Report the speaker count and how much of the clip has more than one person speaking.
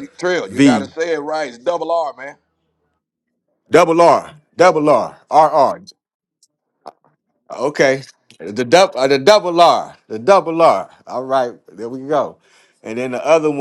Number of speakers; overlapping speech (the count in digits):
2, about 2%